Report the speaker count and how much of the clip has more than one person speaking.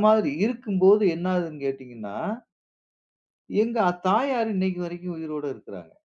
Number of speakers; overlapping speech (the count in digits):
1, no overlap